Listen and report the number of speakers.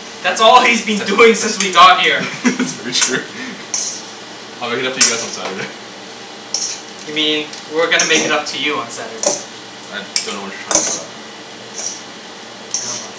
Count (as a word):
two